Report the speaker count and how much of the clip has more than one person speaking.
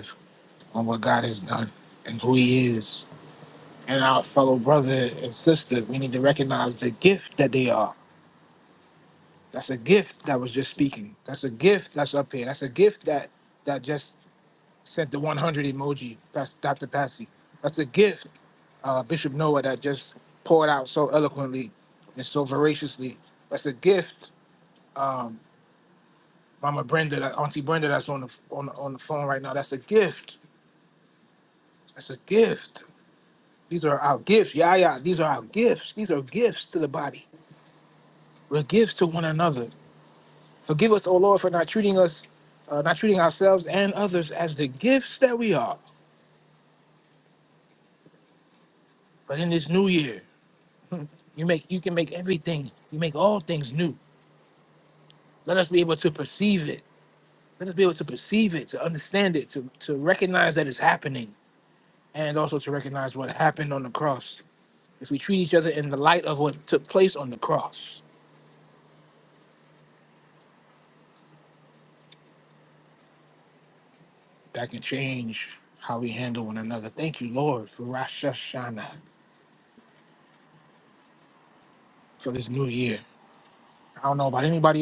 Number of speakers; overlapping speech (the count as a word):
one, no overlap